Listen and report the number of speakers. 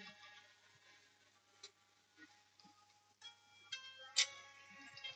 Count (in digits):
0